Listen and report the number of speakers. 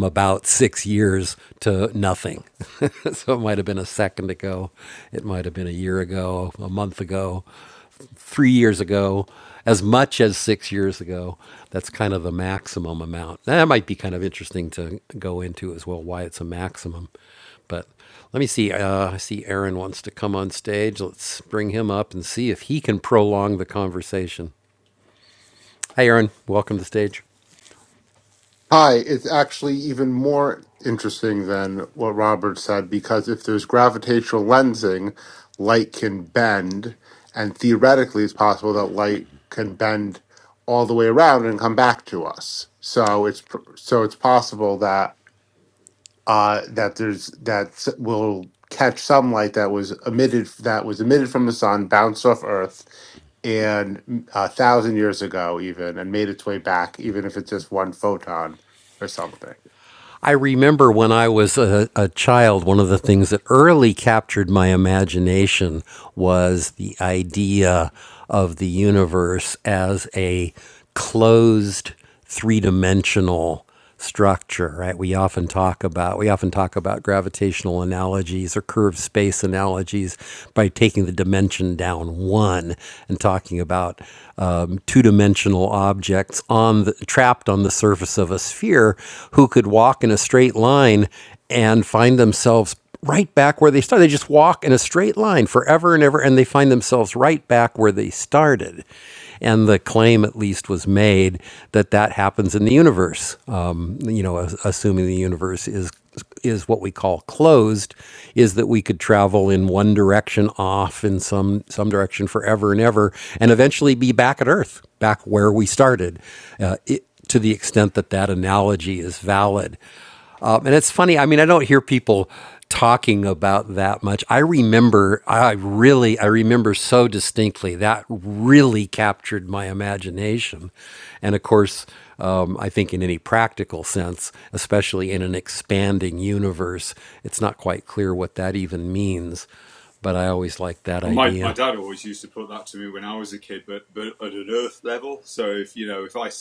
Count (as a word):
three